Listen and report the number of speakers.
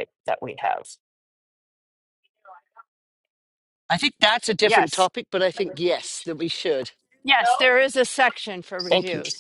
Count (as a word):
three